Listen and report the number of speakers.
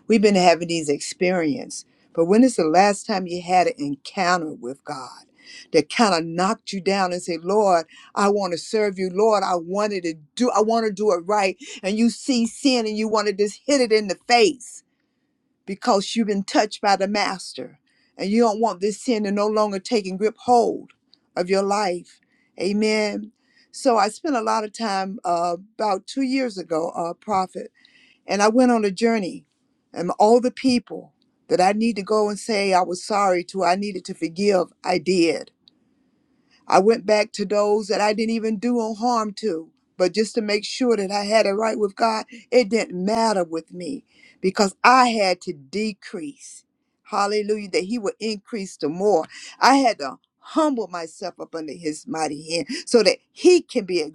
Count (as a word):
one